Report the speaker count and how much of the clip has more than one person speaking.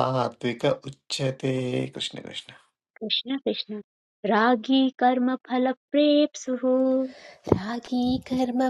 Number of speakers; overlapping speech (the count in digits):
3, no overlap